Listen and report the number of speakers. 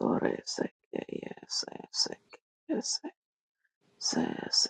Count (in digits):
1